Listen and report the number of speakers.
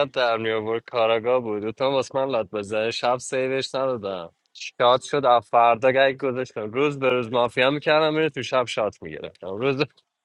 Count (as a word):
one